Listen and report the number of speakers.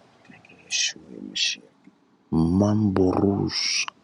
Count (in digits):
2